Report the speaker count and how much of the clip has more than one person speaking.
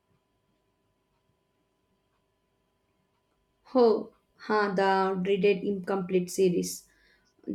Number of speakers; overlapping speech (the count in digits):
1, no overlap